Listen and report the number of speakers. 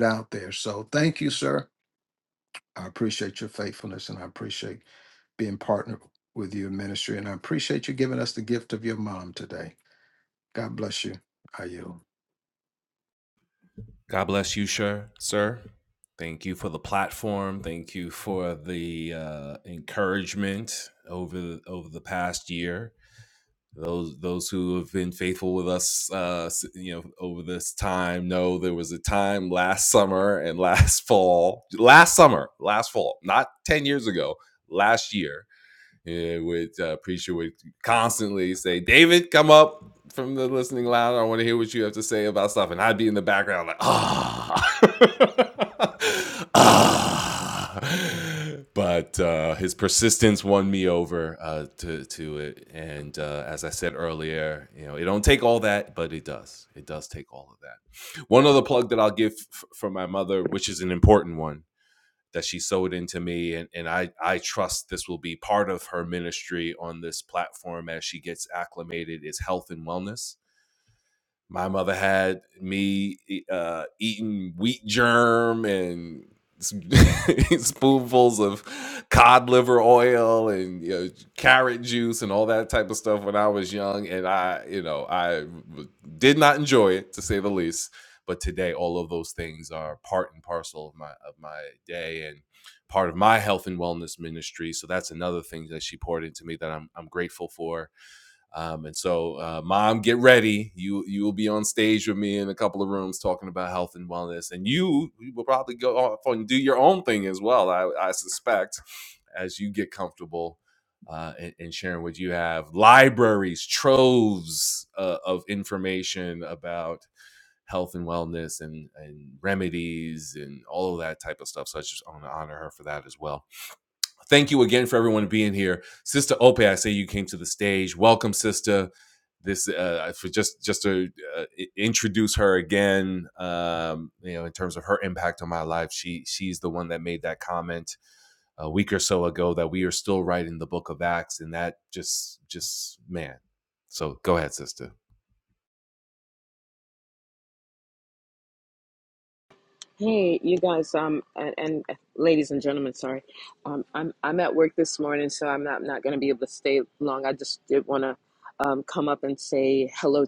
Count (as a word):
three